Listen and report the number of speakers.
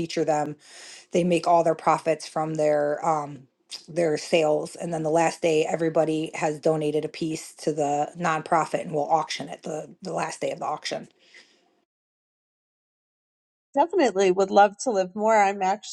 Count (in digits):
2